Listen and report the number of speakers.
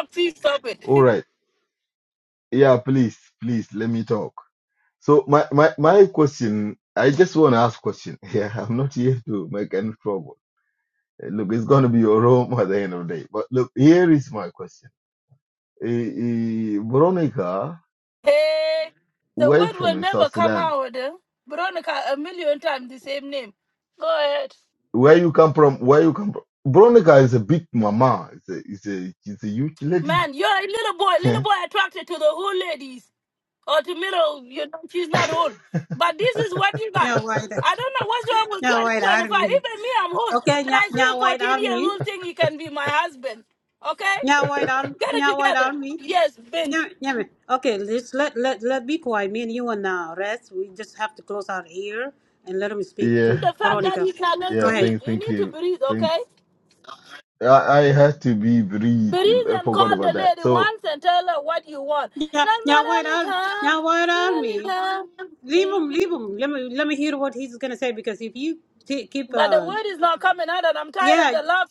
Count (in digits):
3